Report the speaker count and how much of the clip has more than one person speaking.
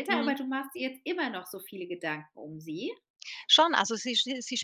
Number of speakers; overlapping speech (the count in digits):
2, about 6%